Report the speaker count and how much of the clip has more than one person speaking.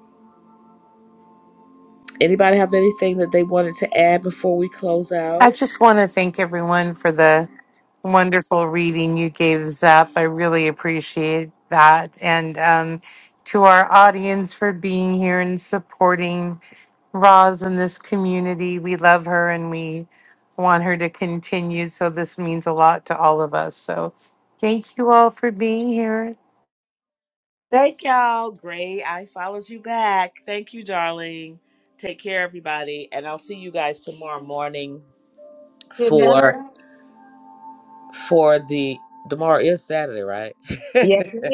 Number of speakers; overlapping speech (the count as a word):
three, about 2%